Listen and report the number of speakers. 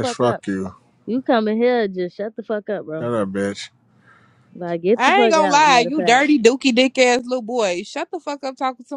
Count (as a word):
three